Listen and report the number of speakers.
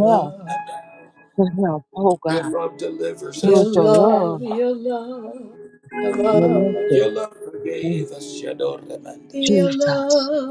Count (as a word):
three